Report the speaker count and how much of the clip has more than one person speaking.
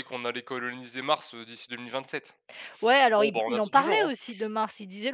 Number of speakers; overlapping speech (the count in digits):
2, about 18%